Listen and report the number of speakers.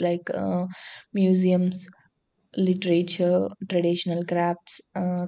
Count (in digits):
1